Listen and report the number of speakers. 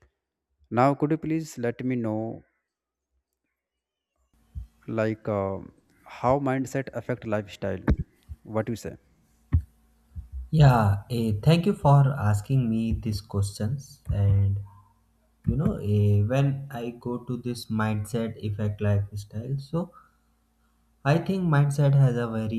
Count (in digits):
2